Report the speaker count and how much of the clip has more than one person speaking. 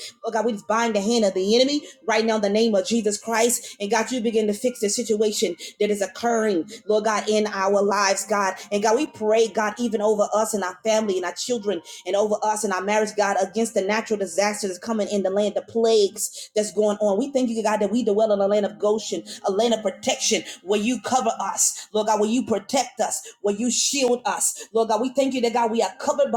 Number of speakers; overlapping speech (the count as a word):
one, no overlap